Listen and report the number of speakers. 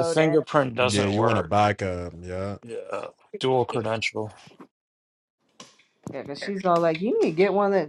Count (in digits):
3